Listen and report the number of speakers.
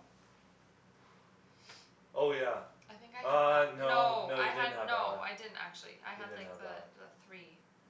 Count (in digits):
2